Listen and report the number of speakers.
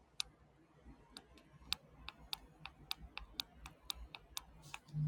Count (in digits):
0